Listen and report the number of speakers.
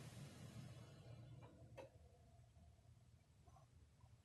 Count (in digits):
0